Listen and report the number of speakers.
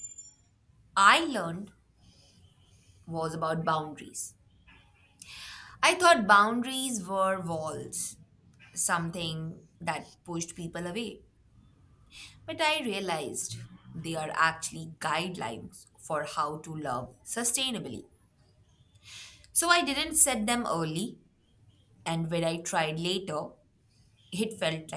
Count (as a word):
one